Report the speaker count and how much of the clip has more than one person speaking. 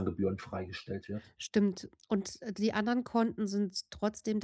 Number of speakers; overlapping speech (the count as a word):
two, no overlap